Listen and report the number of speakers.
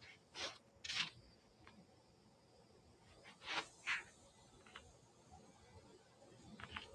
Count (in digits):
0